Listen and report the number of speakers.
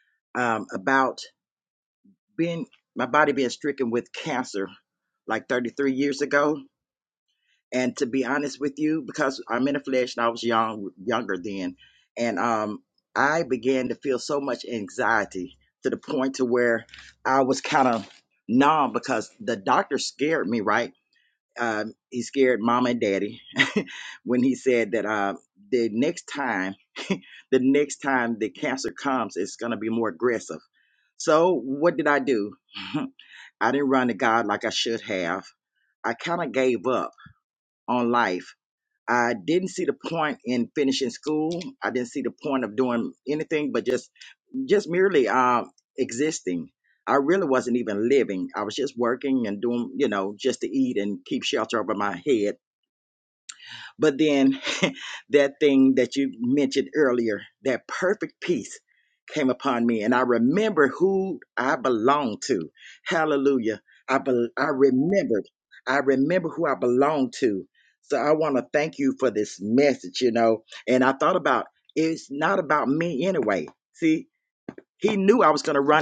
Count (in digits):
1